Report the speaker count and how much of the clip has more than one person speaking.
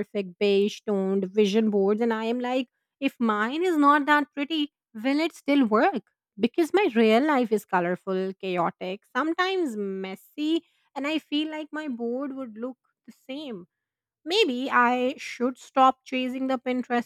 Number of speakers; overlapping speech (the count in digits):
1, no overlap